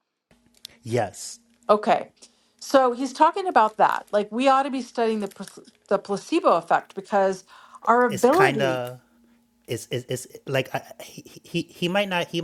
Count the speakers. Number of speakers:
2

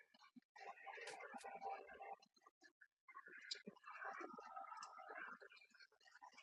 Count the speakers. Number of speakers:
0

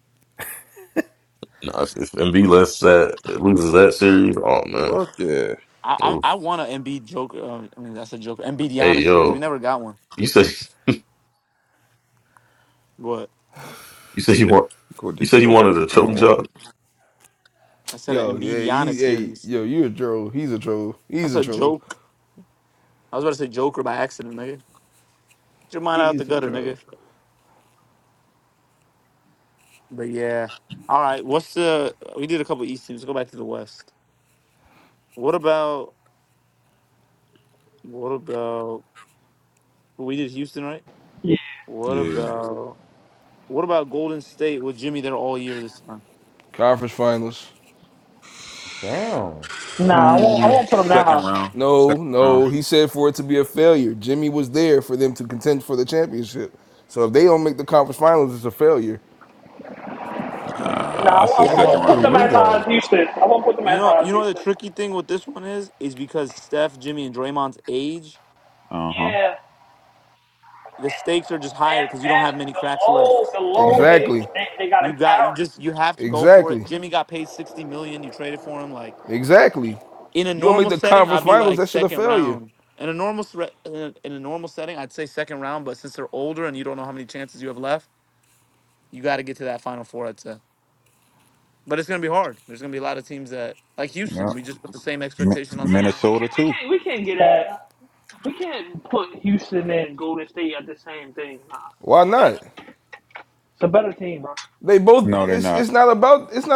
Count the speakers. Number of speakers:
6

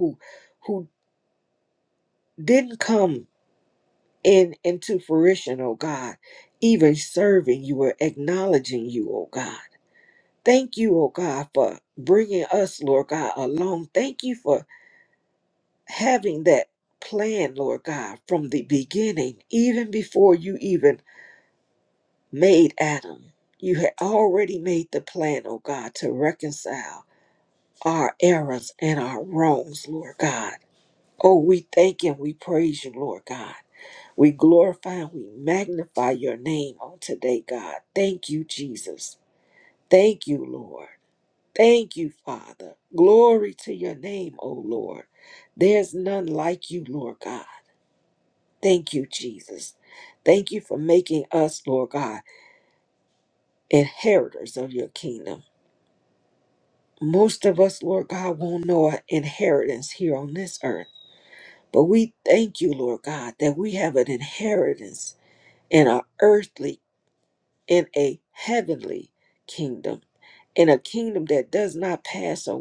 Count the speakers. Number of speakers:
1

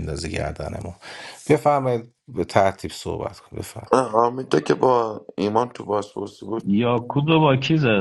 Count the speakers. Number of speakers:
3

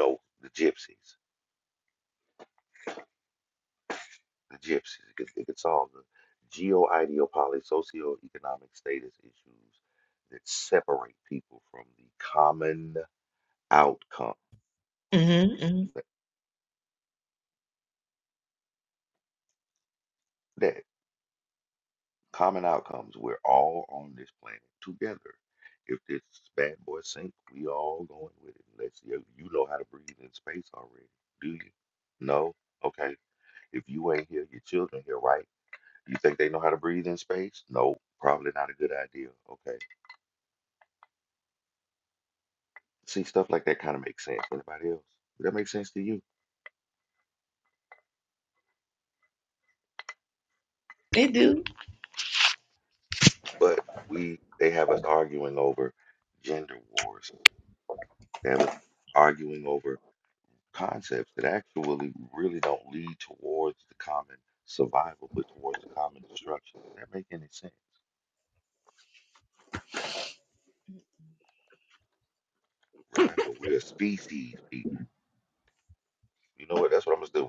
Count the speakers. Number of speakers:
2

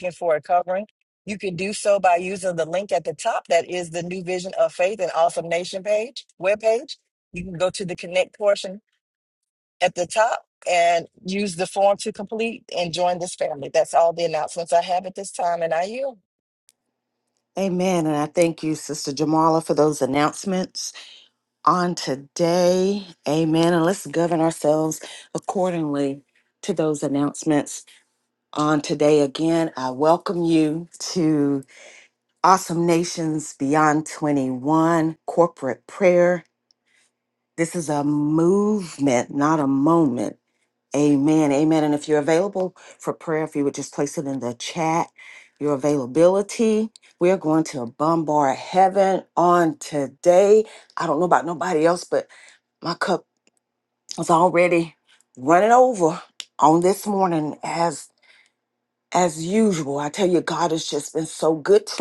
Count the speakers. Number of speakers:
2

